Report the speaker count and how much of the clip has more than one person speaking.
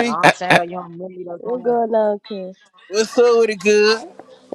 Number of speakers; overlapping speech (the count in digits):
3, about 11%